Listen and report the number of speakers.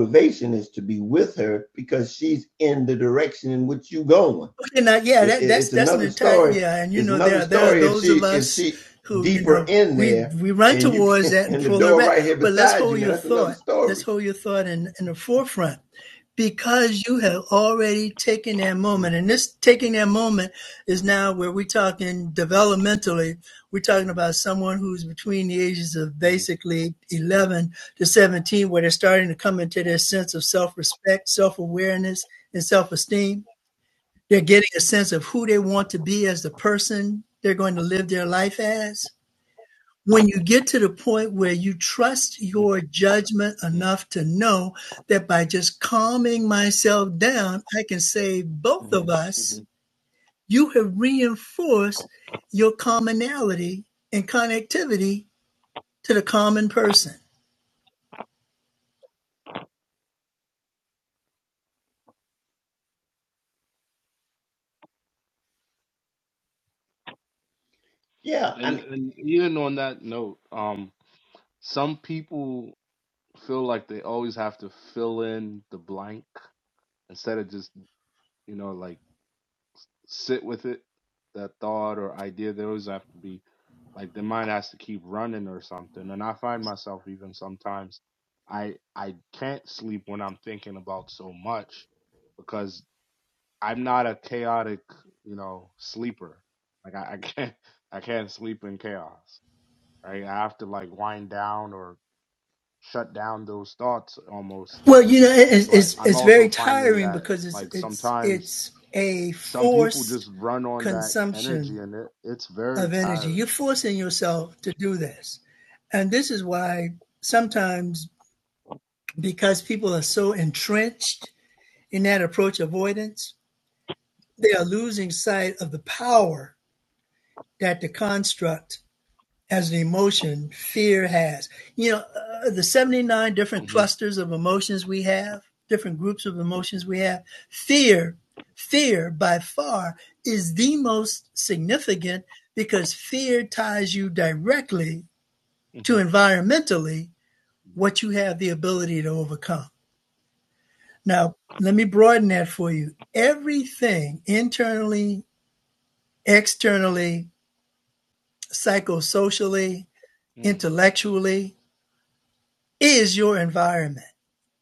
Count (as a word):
three